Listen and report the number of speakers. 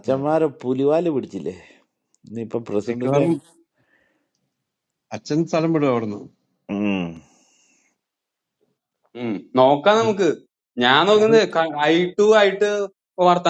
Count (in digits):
3